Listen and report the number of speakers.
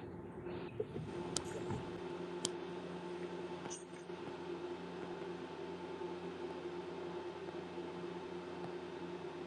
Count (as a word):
zero